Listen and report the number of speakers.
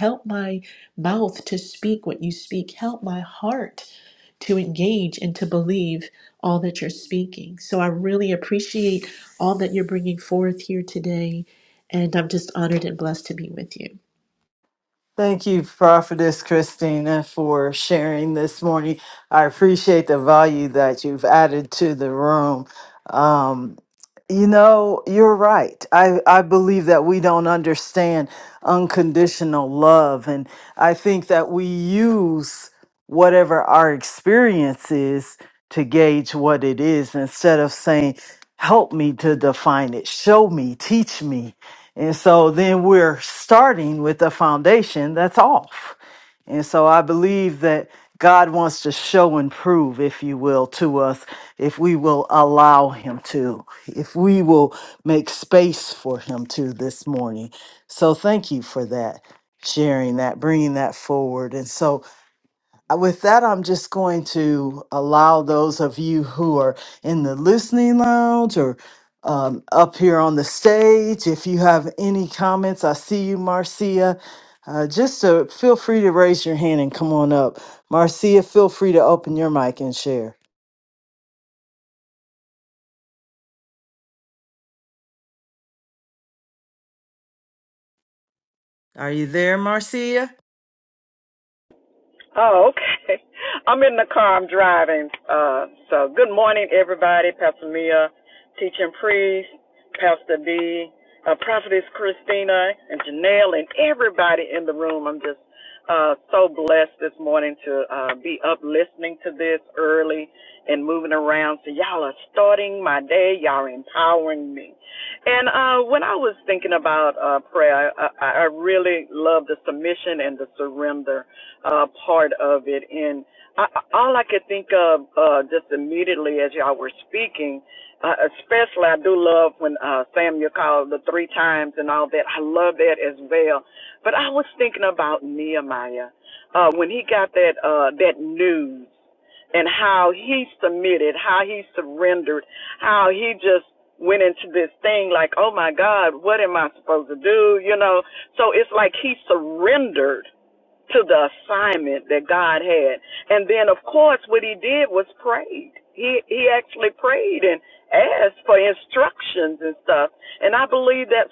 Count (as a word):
three